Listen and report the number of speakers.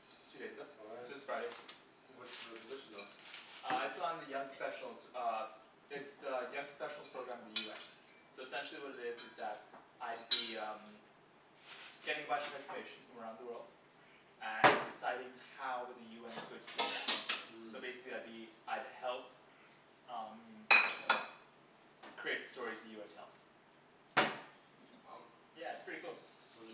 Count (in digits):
2